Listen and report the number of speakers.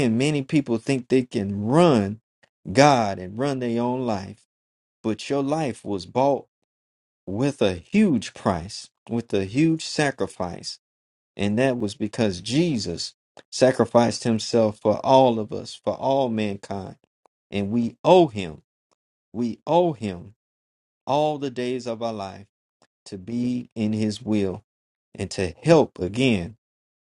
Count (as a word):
one